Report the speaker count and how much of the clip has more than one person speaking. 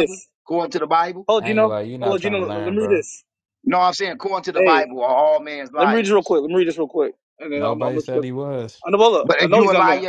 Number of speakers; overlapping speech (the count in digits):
3, about 39%